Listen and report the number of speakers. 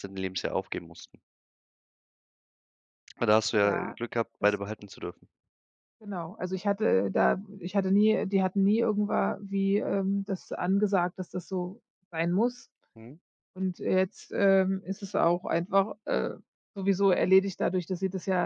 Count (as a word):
two